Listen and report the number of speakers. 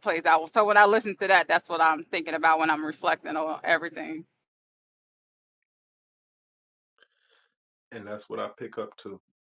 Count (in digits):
2